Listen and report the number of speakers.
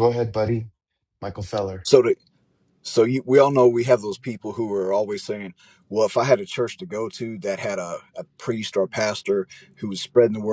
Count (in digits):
2